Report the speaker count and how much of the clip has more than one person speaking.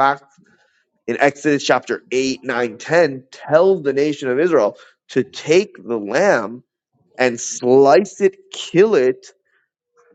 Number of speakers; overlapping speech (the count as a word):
one, no overlap